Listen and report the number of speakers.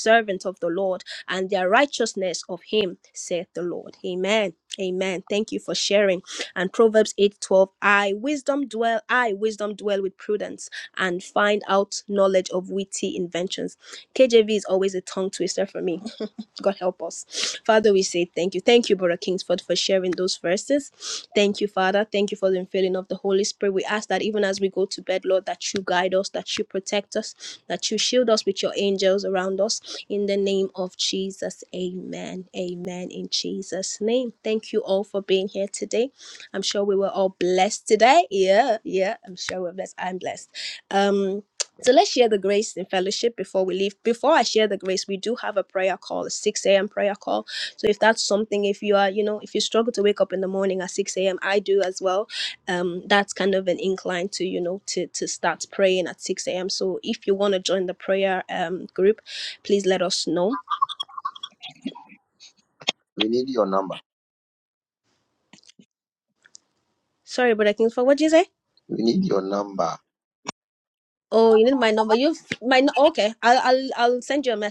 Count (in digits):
2